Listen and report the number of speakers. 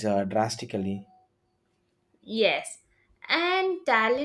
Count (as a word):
two